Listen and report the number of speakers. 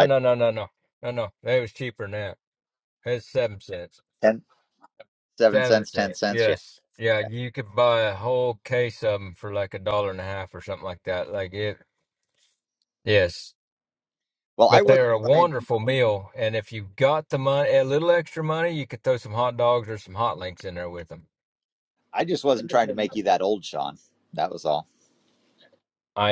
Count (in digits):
2